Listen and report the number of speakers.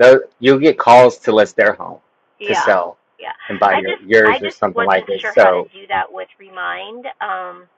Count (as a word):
two